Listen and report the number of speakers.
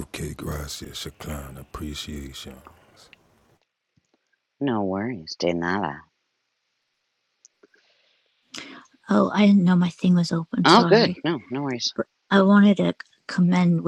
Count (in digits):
3